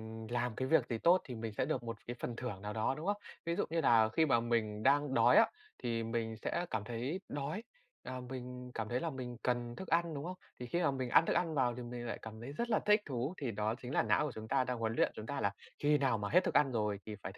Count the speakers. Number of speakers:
1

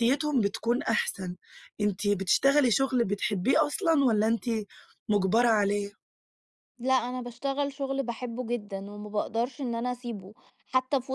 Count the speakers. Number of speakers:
2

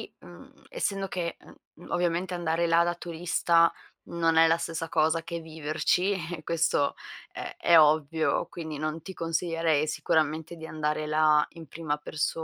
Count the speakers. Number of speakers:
1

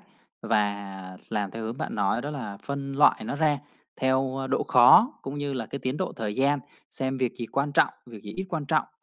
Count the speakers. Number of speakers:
1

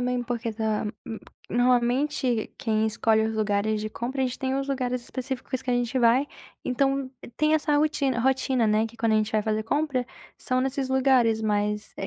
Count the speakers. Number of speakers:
1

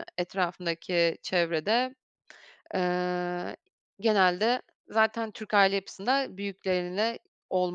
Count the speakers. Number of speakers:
1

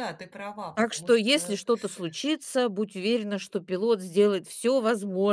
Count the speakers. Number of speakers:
2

